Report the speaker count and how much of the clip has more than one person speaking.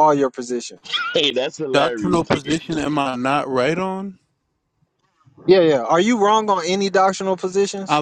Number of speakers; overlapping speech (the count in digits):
3, about 10%